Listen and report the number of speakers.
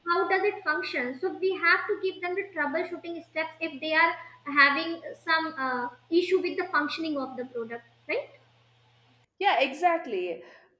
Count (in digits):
2